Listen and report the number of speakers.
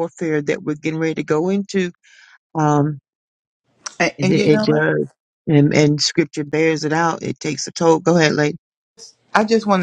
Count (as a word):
two